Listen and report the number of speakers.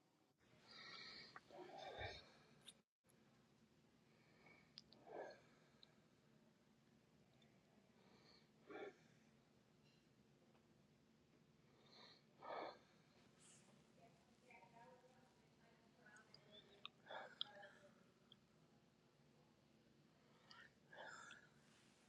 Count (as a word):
zero